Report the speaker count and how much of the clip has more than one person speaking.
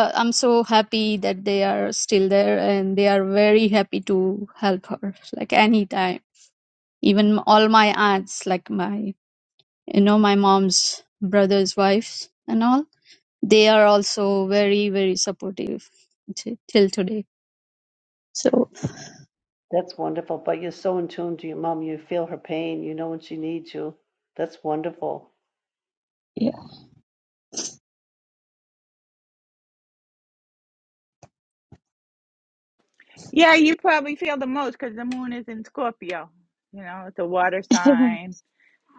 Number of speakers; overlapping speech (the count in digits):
3, no overlap